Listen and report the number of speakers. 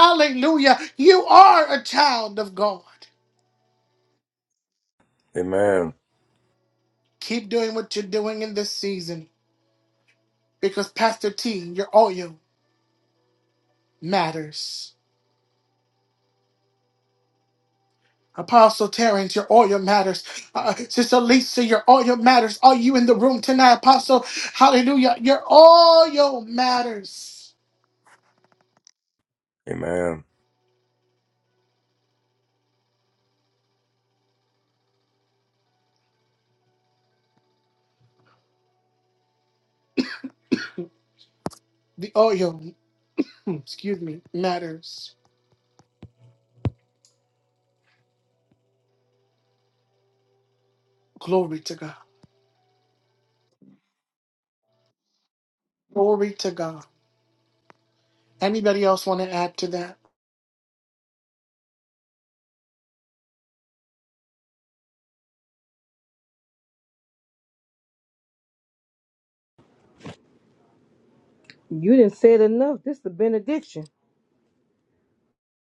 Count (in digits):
3